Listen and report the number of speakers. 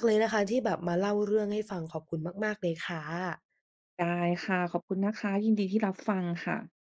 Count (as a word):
two